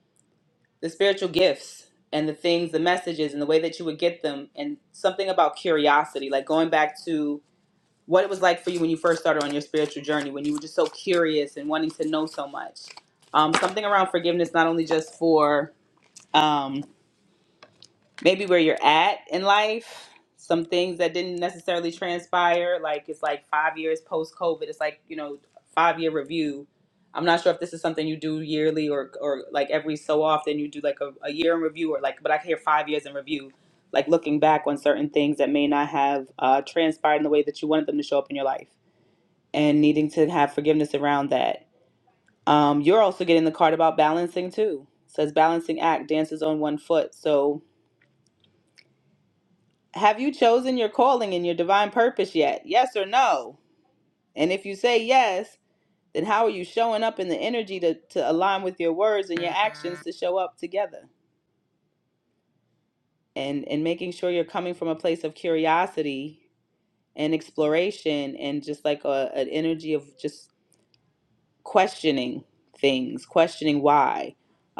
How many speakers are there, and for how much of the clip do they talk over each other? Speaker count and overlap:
1, no overlap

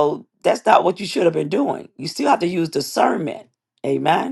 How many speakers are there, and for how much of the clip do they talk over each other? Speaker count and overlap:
1, no overlap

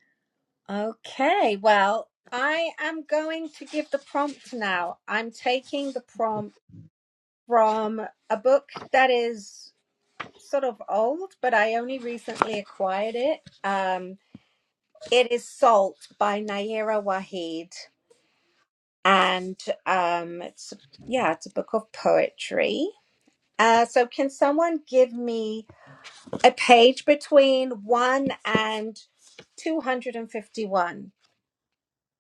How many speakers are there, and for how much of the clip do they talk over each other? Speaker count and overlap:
1, no overlap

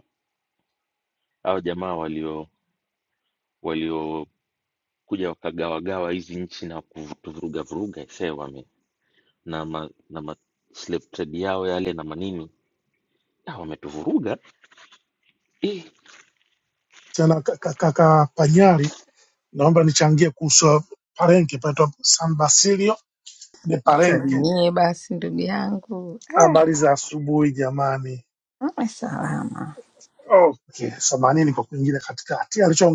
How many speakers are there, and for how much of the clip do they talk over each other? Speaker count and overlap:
3, about 2%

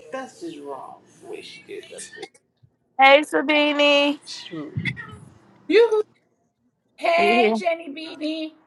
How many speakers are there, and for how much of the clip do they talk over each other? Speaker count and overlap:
3, about 3%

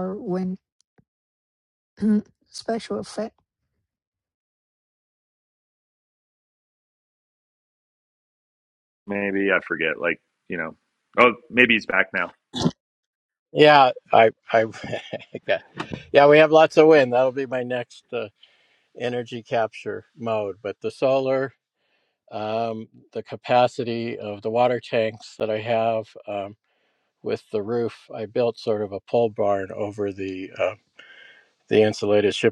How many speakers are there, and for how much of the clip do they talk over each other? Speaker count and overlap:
3, no overlap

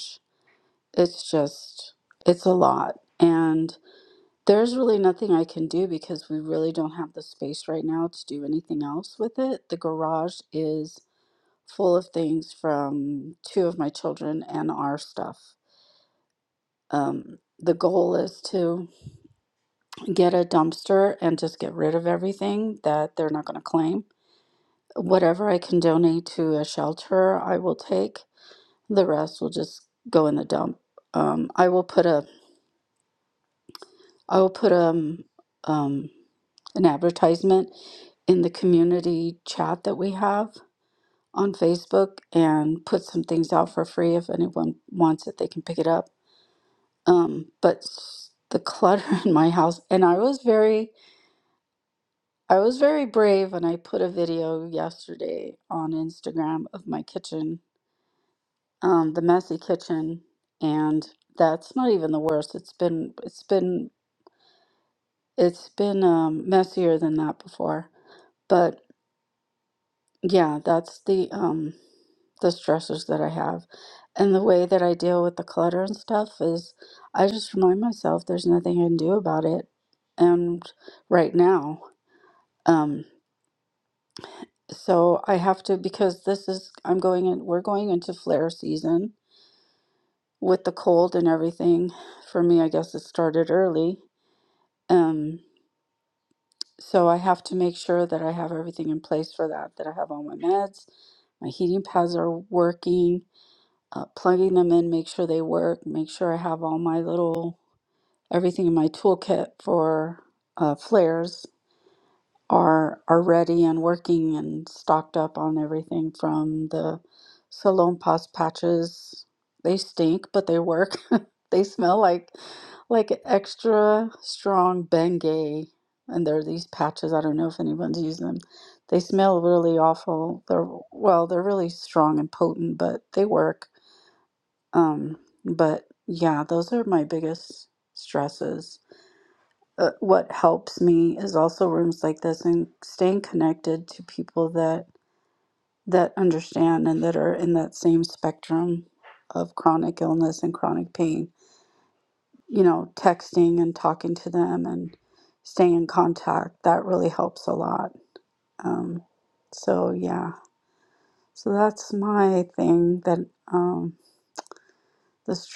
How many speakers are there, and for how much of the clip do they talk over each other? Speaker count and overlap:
1, no overlap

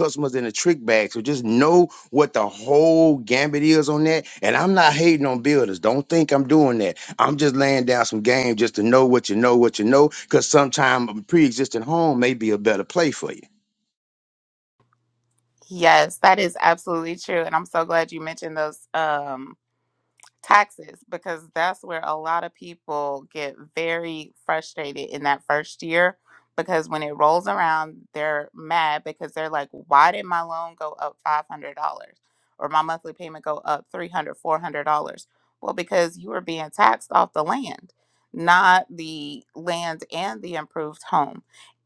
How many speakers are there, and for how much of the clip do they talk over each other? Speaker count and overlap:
2, no overlap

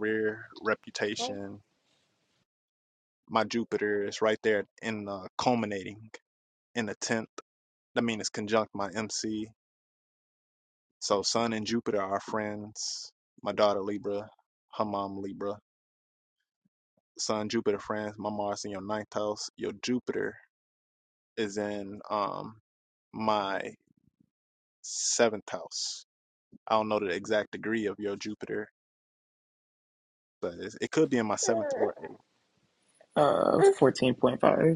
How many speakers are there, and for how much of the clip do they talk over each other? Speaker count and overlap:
2, no overlap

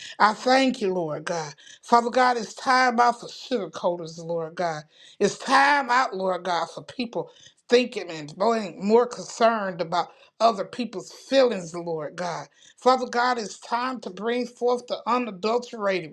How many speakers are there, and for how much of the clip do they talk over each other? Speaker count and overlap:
1, no overlap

